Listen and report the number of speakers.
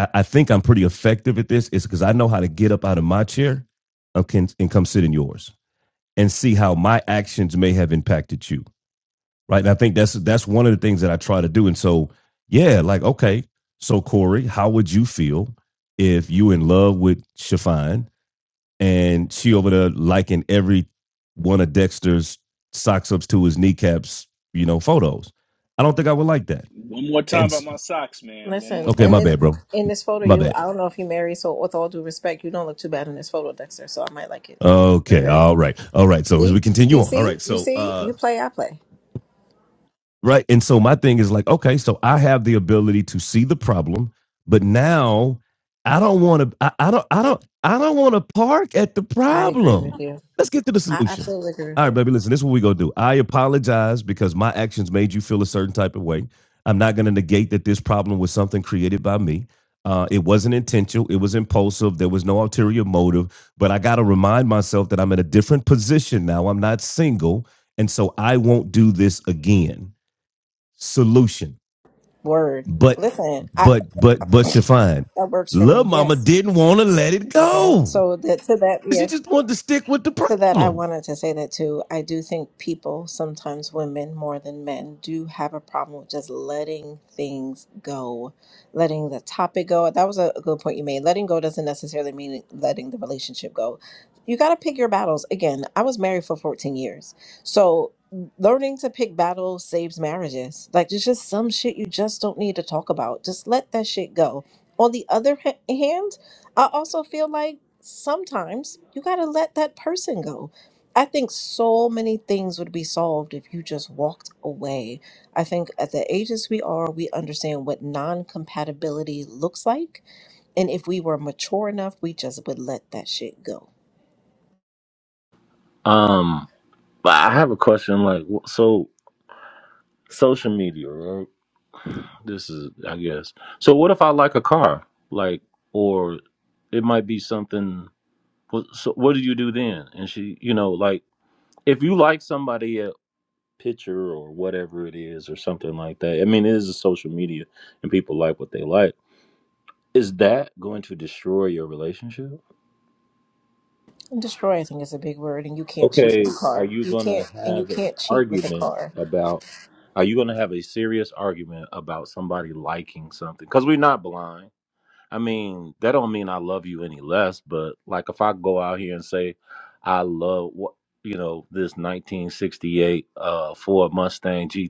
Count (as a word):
four